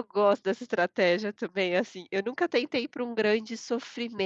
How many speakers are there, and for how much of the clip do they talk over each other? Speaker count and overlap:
one, no overlap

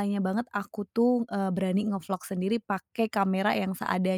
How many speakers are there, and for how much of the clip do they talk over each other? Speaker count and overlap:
one, no overlap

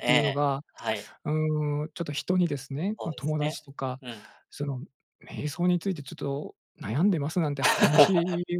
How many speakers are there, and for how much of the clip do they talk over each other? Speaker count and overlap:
two, about 11%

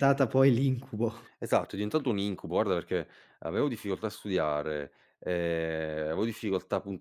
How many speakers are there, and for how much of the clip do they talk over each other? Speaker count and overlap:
two, no overlap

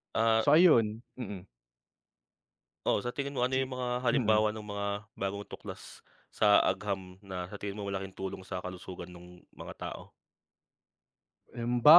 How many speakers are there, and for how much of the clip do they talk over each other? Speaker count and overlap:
two, about 4%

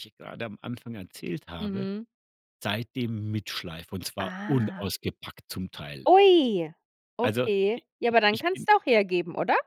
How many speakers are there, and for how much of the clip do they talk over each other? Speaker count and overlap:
two, about 24%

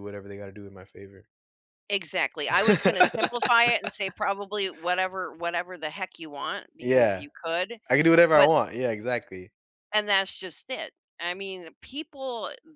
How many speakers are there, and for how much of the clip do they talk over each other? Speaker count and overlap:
two, about 5%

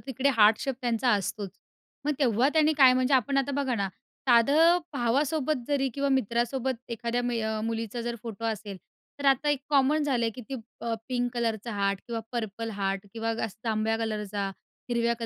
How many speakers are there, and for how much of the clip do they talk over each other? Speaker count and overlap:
one, no overlap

